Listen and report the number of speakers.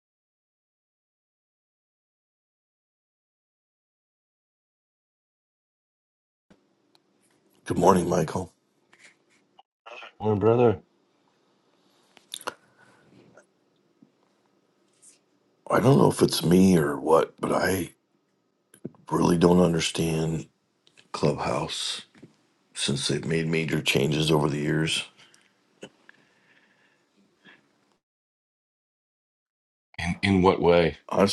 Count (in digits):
2